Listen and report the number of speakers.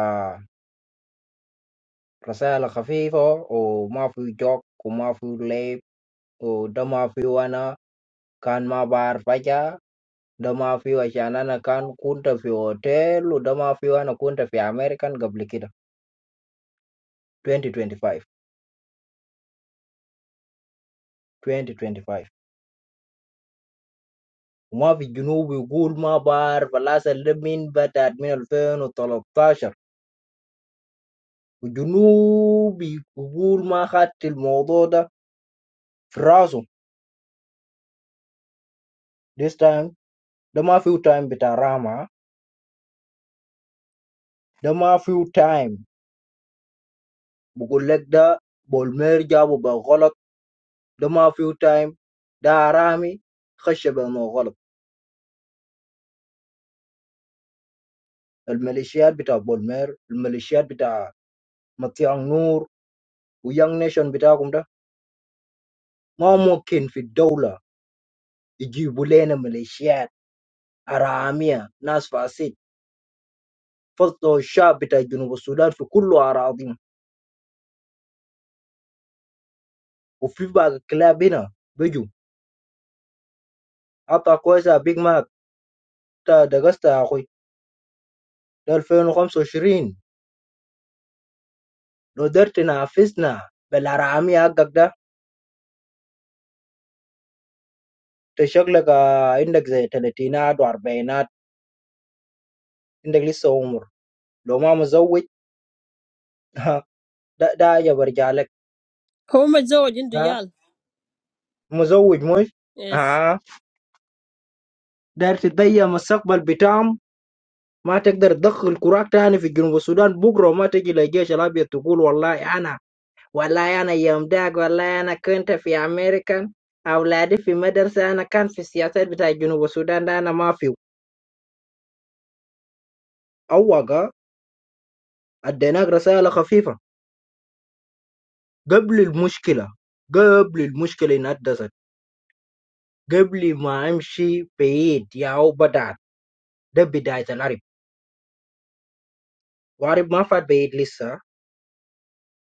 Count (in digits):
2